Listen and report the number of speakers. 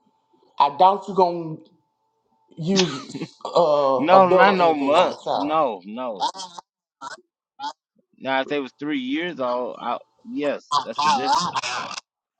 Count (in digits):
2